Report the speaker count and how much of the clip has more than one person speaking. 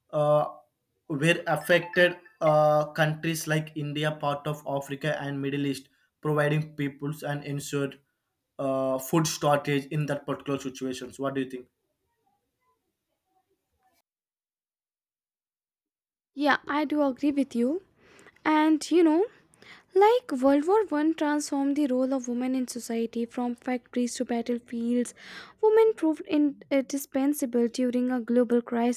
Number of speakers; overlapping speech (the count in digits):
2, no overlap